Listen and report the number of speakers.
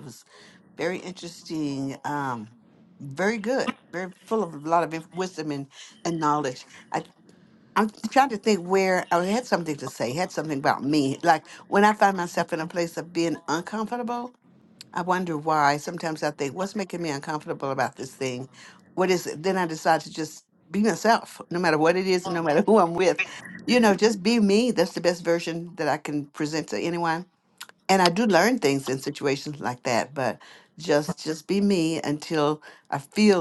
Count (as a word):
one